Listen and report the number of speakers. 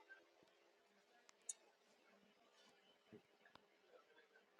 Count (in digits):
0